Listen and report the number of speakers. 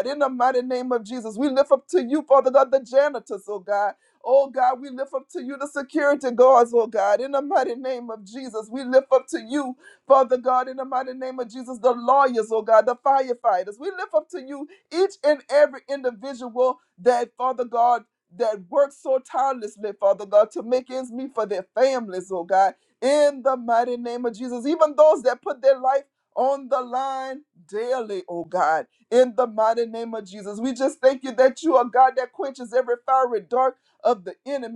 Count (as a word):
one